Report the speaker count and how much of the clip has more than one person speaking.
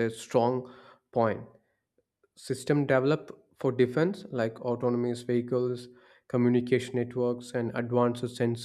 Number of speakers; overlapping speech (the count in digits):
1, no overlap